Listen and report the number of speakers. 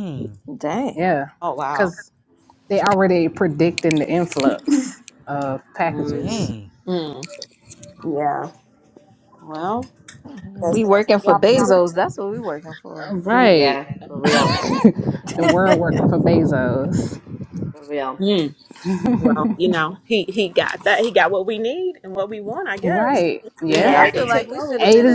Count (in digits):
5